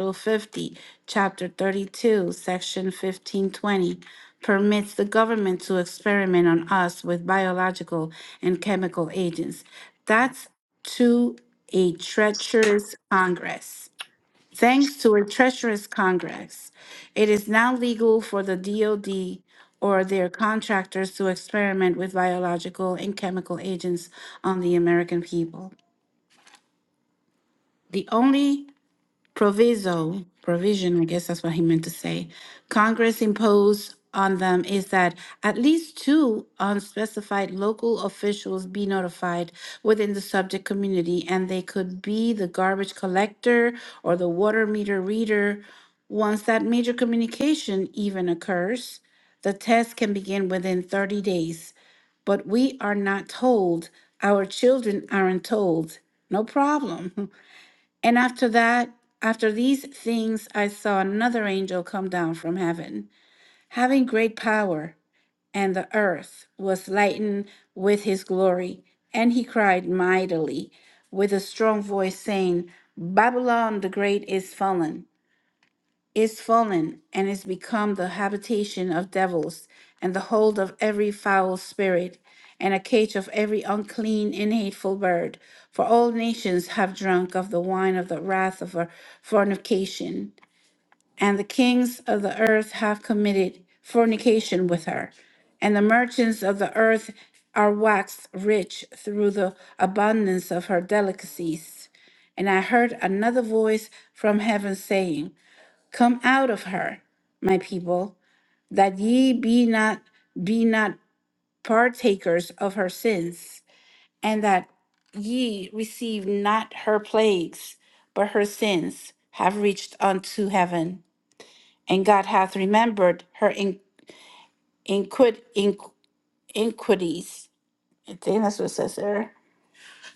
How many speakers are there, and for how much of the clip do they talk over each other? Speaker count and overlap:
1, no overlap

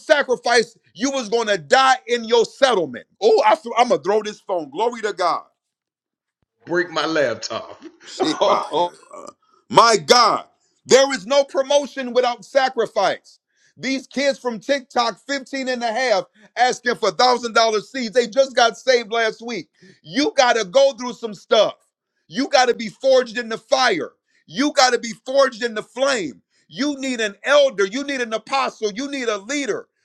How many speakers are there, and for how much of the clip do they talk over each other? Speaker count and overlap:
2, about 2%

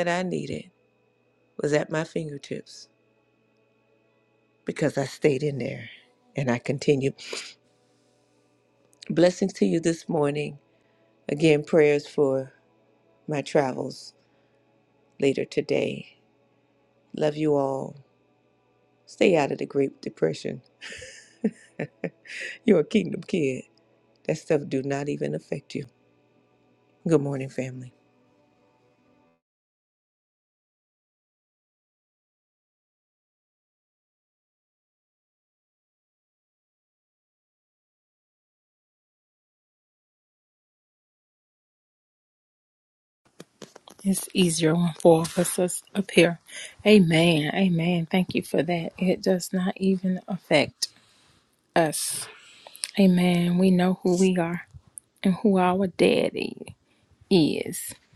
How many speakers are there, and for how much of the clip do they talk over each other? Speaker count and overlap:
2, no overlap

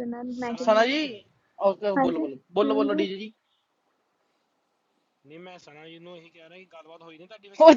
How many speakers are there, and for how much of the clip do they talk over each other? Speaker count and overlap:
3, about 20%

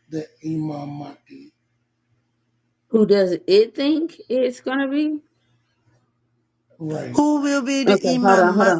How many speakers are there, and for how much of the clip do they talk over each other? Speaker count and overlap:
3, about 11%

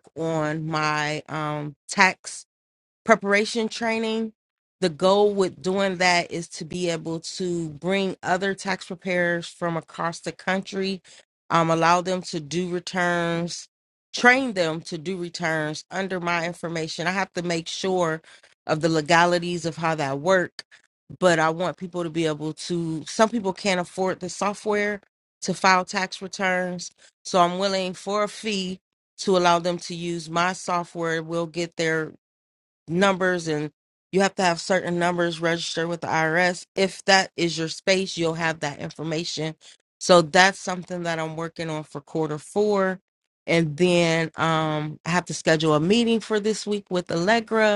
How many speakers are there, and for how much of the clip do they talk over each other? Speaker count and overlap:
1, no overlap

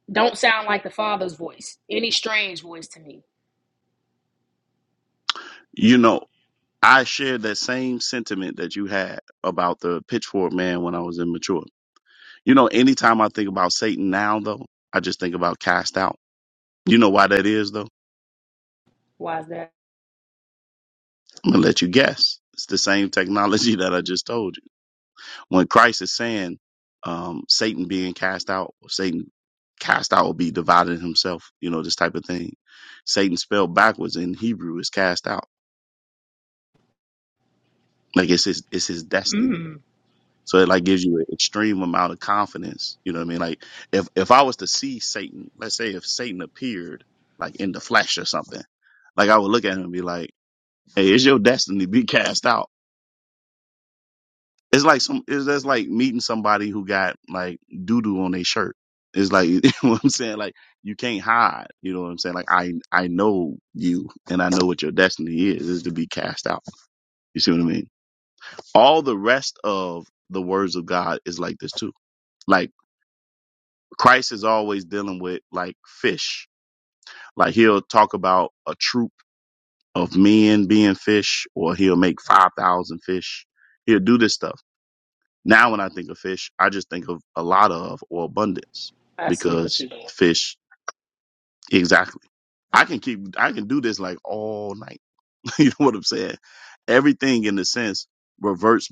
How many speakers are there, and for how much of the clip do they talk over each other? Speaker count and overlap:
2, about 1%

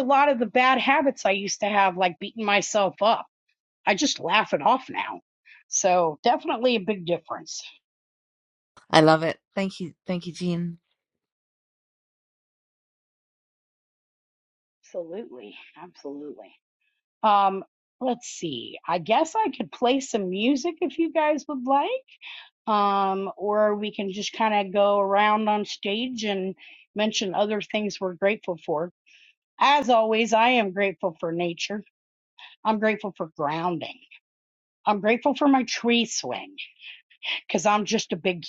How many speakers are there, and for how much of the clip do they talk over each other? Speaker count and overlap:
2, no overlap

